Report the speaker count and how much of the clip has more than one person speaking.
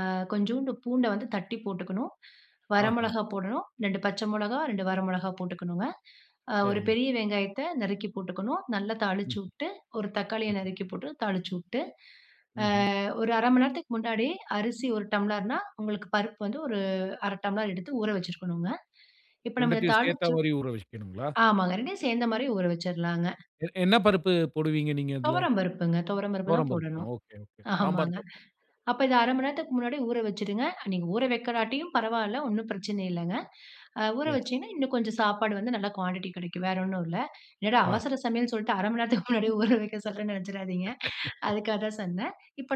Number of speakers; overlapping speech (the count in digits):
2, about 7%